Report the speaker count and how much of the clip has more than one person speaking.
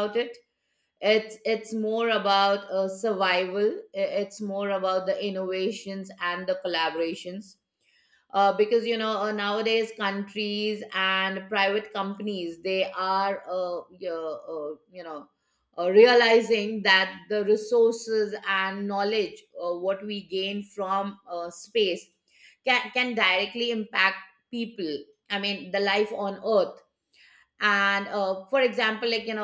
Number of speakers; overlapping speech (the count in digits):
1, no overlap